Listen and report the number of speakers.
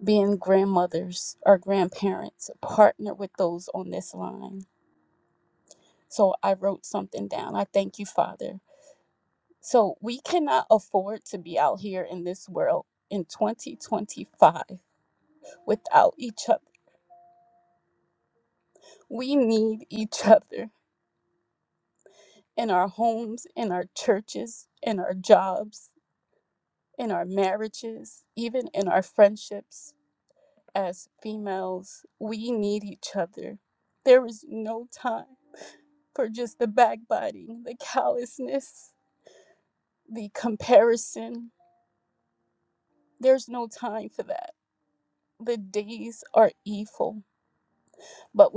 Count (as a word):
one